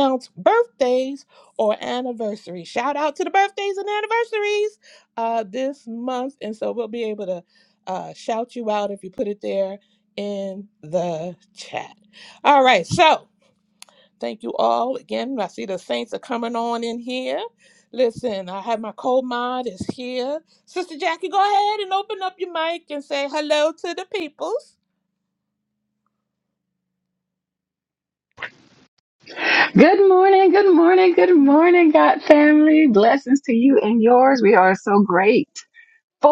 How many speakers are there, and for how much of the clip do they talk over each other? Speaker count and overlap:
2, no overlap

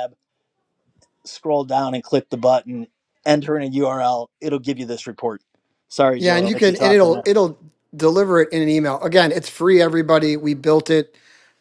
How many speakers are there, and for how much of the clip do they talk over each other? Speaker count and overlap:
2, about 9%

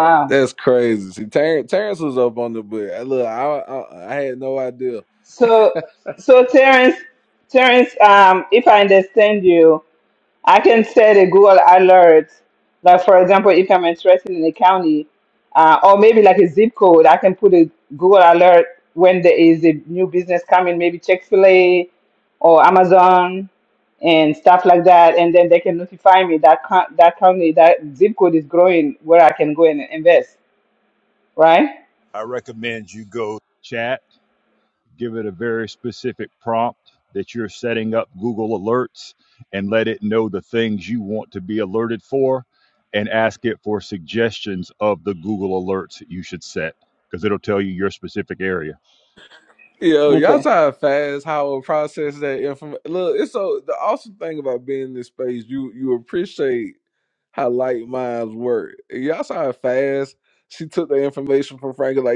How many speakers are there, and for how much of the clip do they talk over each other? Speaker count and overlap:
3, about 1%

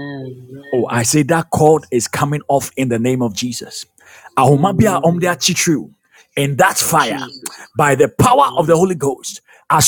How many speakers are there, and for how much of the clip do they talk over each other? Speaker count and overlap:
2, about 14%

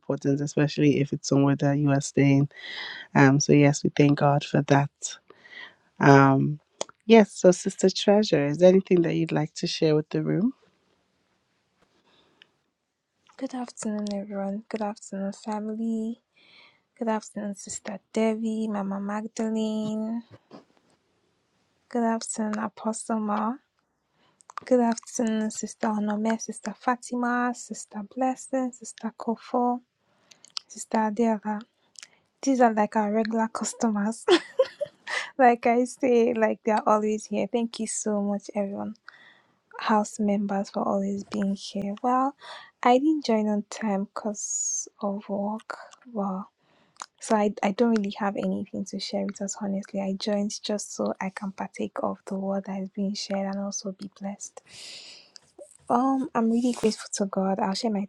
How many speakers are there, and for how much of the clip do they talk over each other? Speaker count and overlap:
2, no overlap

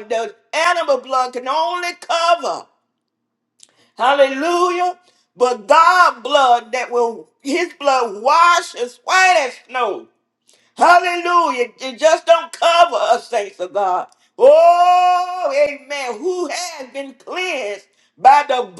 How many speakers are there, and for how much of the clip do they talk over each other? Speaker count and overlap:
1, no overlap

